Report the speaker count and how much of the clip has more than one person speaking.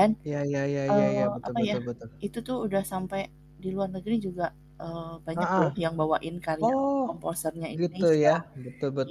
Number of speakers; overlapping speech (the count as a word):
two, about 27%